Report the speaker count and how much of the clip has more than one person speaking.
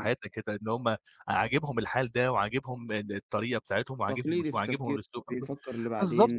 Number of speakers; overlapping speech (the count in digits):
2, about 21%